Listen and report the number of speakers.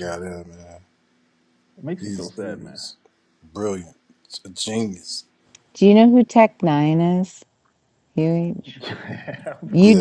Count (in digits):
3